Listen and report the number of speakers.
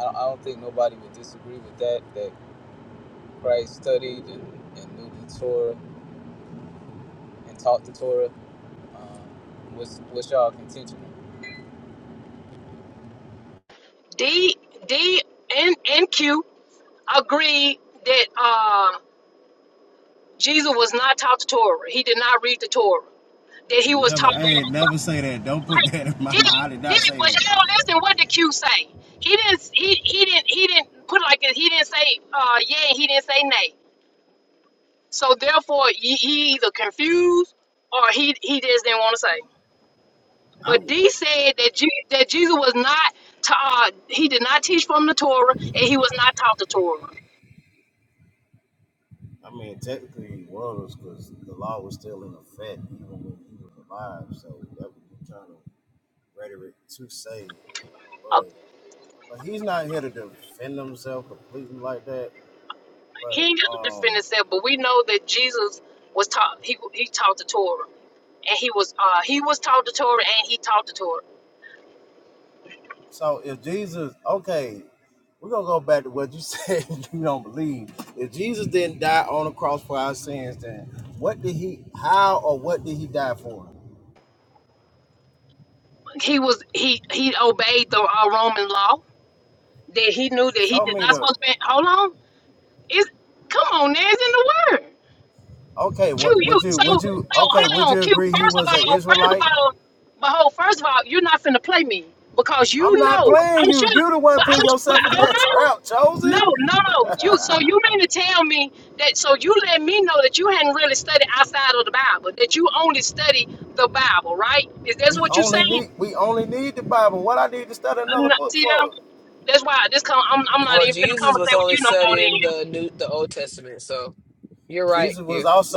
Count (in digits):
4